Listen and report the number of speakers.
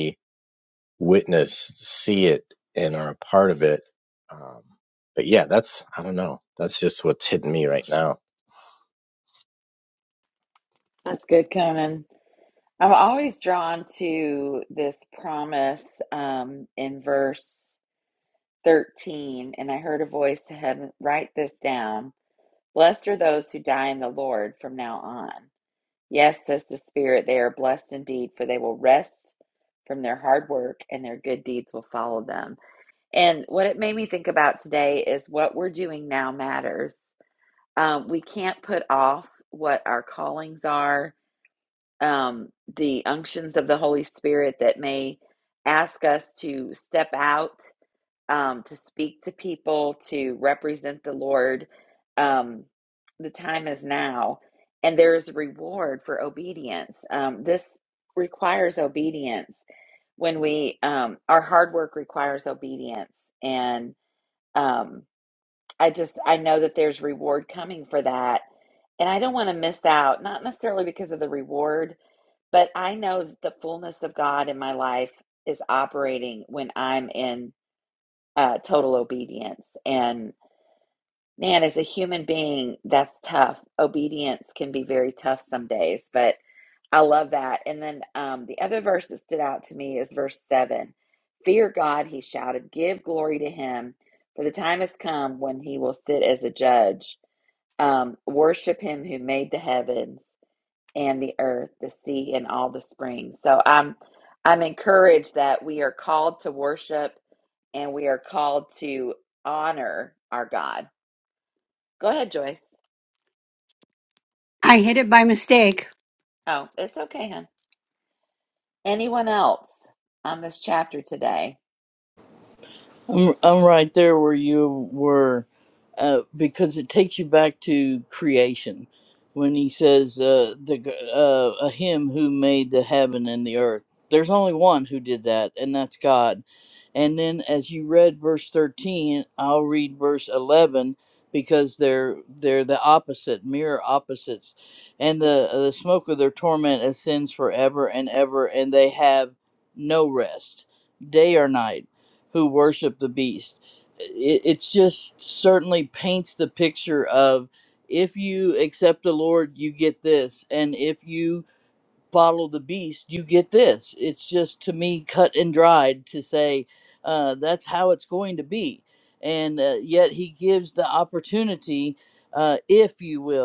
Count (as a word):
four